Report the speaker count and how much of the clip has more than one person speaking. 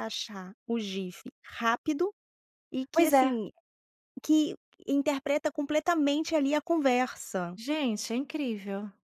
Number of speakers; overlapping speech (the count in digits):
2, about 4%